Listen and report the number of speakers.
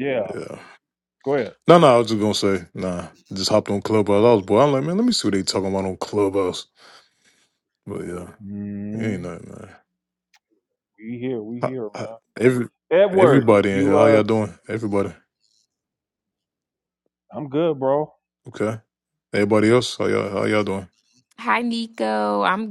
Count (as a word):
three